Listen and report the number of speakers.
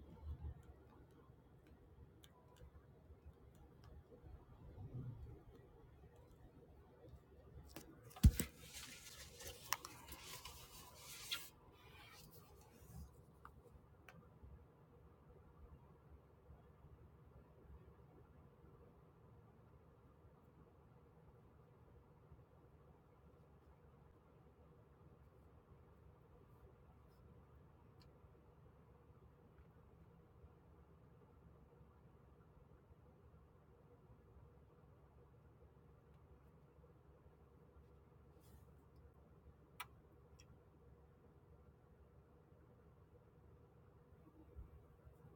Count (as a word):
zero